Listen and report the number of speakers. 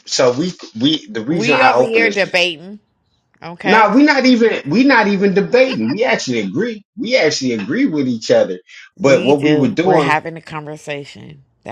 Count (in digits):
2